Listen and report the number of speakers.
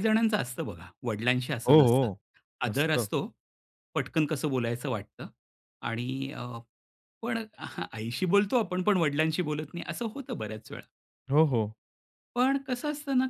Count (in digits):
2